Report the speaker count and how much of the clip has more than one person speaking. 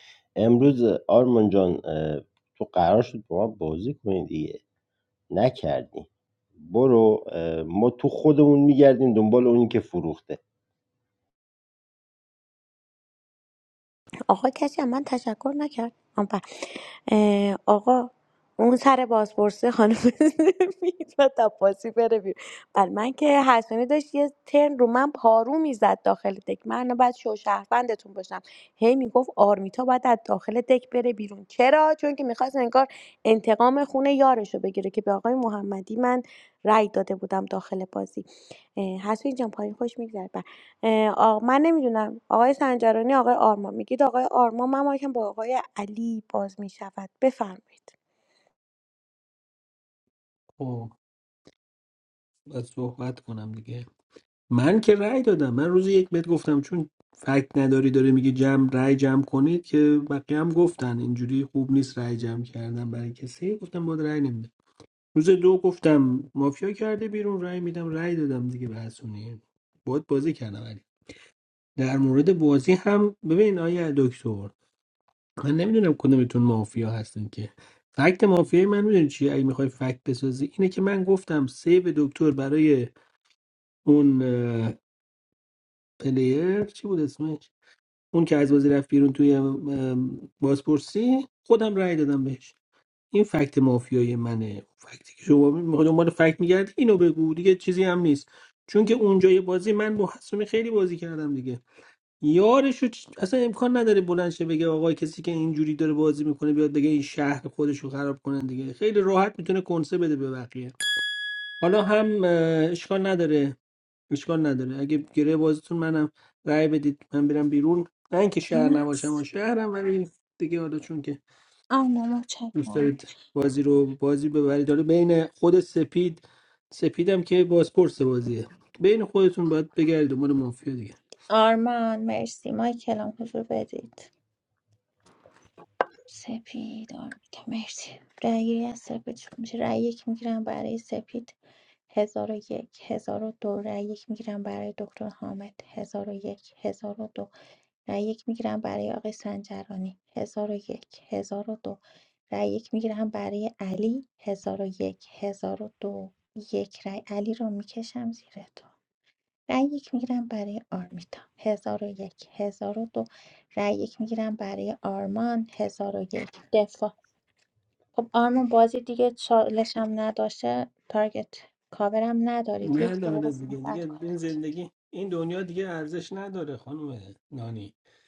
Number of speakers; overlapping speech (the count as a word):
four, about 1%